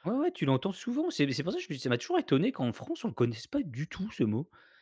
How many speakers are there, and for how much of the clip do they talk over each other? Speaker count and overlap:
one, no overlap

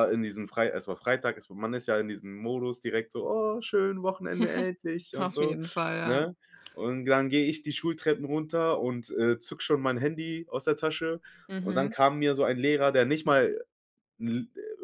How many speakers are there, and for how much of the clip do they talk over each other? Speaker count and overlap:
two, about 6%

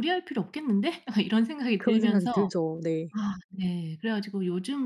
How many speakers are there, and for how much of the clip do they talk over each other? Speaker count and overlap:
two, about 11%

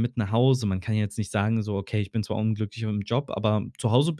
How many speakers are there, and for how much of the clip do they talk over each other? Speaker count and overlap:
one, no overlap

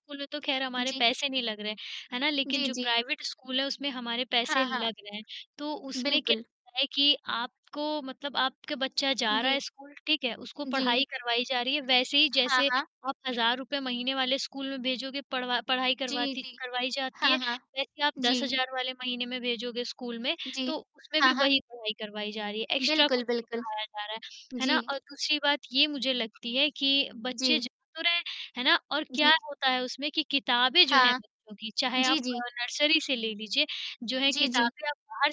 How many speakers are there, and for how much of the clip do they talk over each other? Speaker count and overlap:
two, about 19%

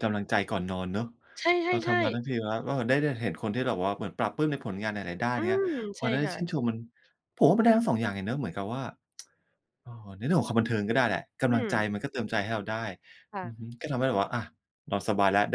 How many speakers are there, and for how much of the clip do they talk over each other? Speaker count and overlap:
two, about 10%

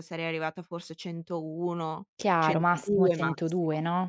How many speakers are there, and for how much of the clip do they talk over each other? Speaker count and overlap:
two, about 16%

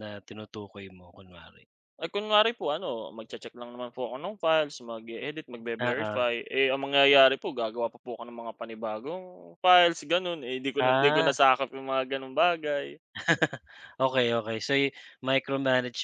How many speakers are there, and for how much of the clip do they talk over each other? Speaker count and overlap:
two, about 6%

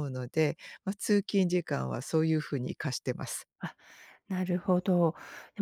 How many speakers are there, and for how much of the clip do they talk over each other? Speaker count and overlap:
two, no overlap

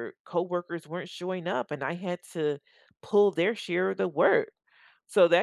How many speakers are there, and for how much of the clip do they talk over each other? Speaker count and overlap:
one, no overlap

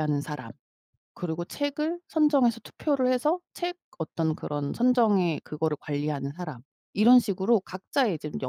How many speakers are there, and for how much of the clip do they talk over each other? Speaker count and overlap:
one, no overlap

